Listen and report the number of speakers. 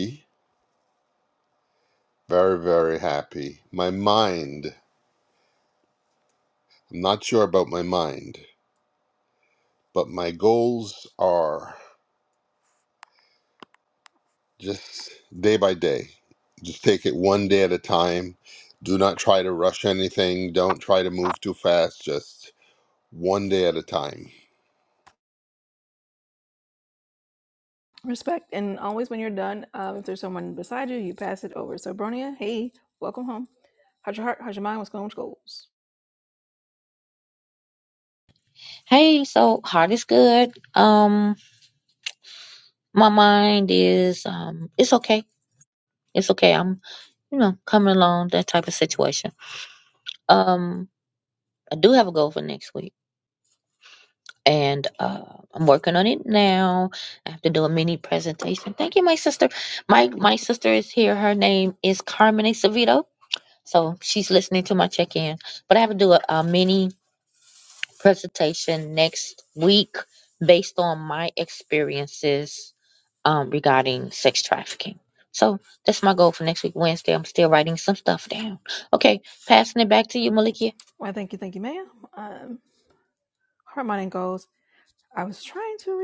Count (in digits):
3